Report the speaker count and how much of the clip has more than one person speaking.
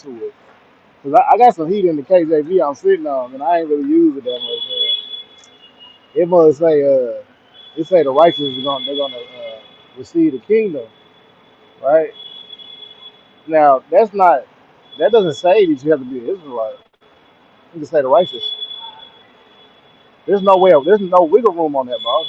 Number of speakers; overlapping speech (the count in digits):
1, no overlap